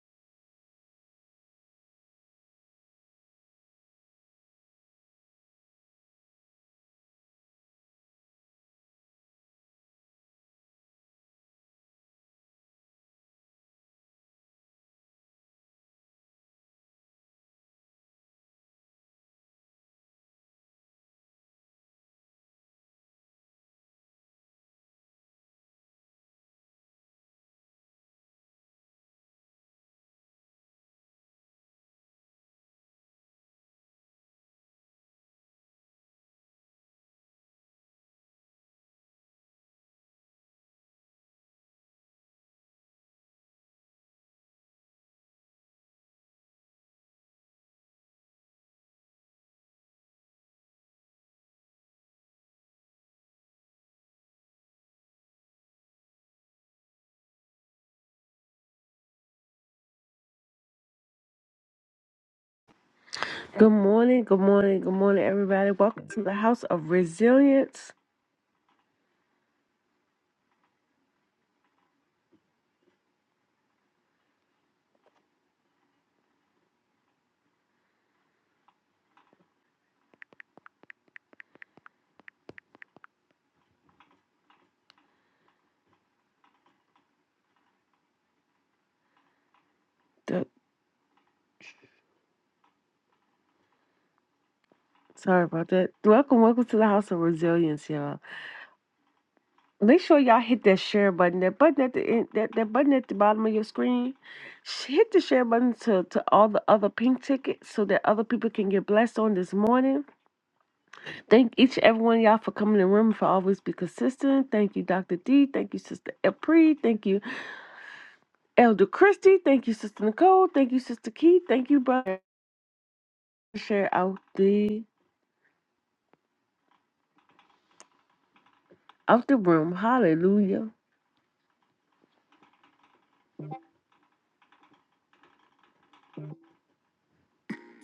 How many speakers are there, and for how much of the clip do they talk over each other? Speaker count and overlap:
1, no overlap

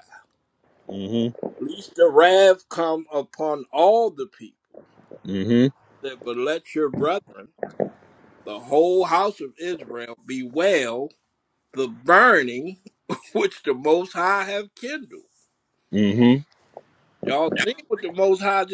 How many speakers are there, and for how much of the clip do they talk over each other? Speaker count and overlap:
2, no overlap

